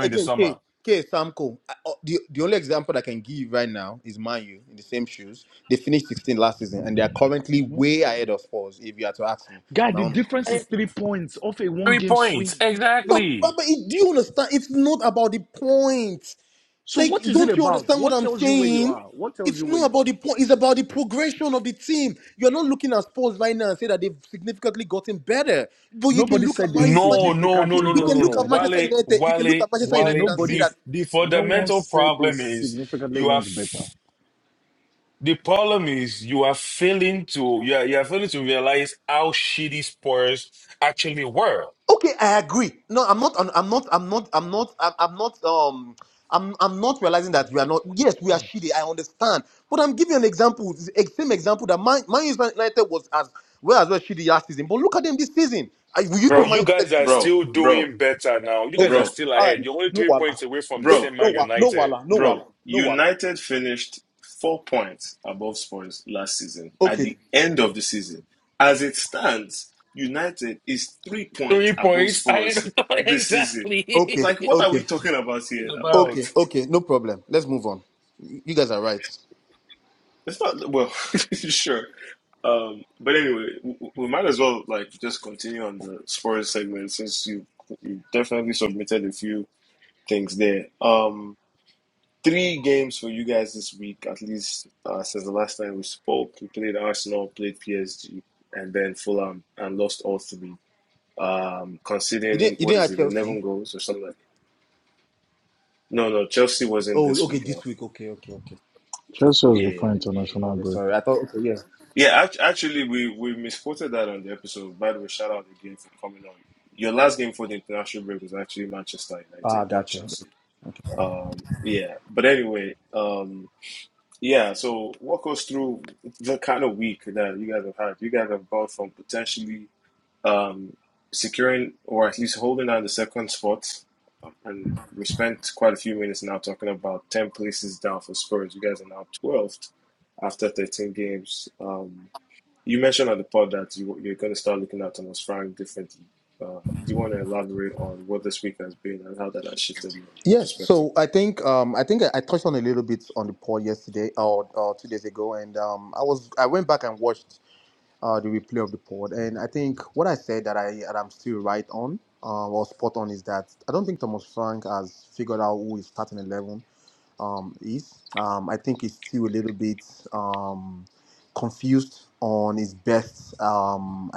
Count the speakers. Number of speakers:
4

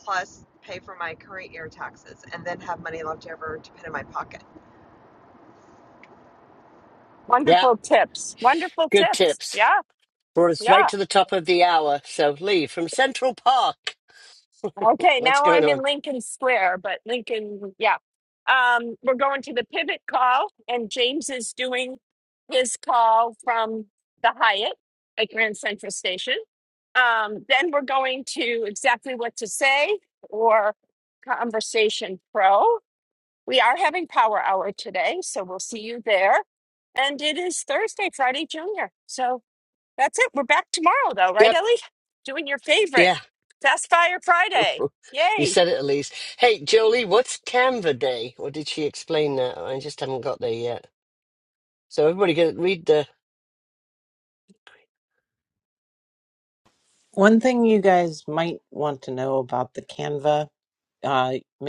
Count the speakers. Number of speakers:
4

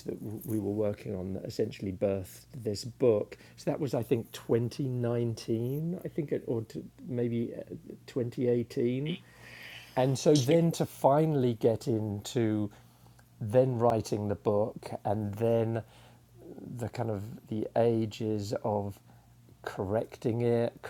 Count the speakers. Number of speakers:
1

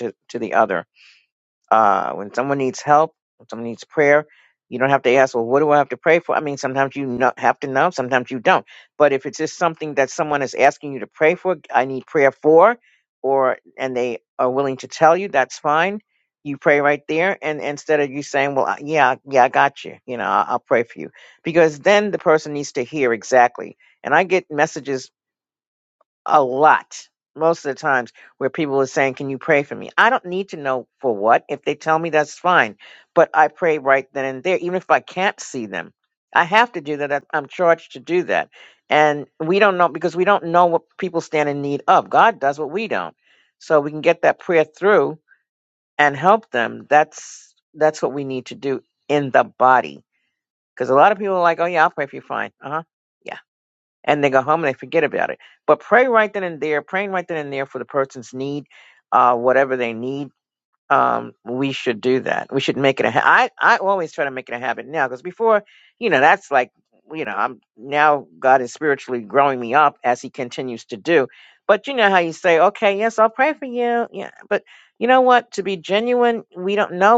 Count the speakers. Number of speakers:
1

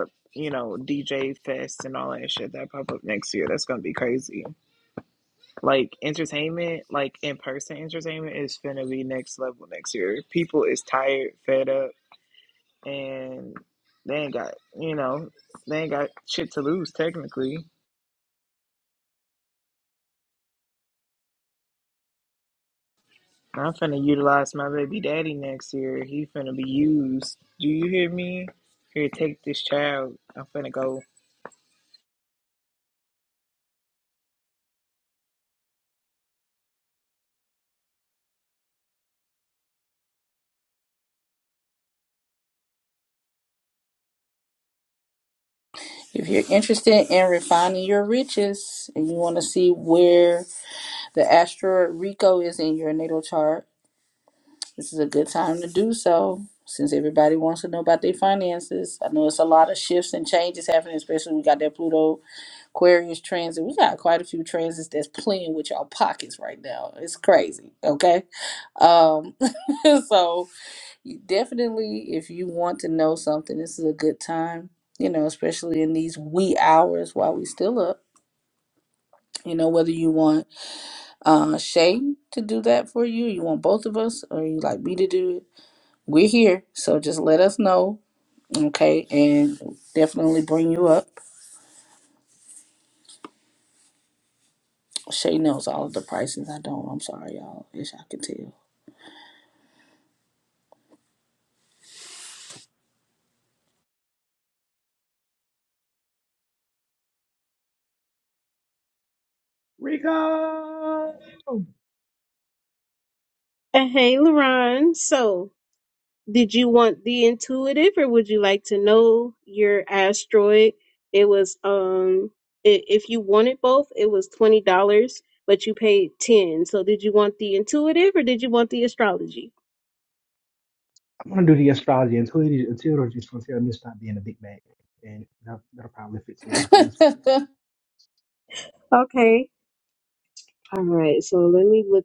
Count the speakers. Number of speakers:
4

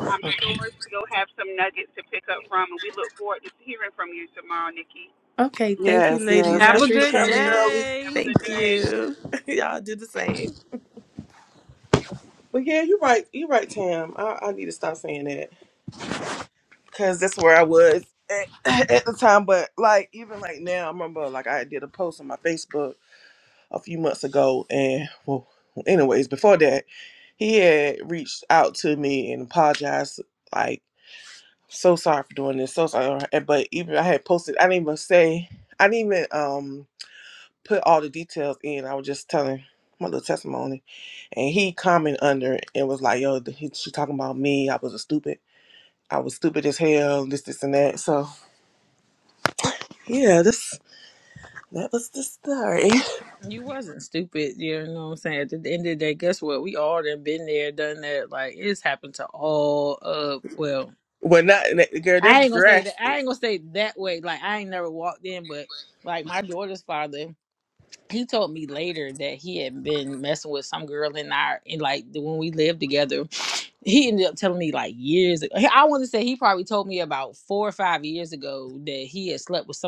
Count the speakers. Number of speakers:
4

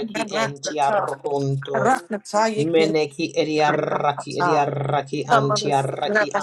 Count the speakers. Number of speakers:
2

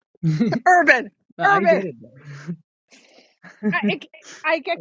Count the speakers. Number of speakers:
2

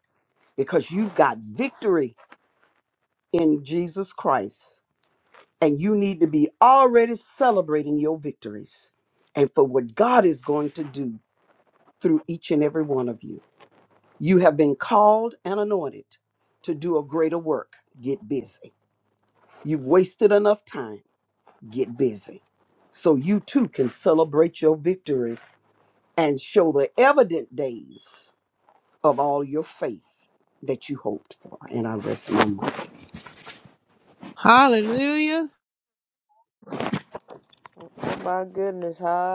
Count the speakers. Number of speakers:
3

